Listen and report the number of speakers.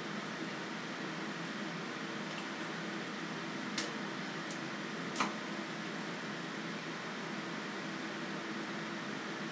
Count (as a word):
zero